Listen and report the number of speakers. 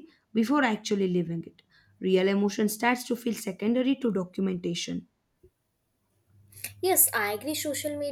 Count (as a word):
two